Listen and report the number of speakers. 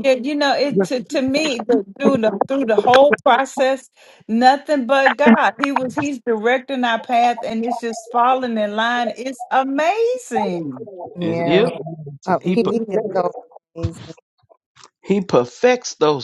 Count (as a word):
three